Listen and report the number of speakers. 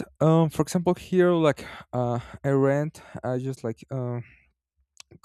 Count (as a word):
one